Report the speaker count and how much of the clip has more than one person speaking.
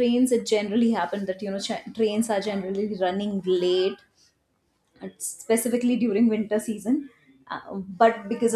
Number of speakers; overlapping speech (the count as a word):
one, no overlap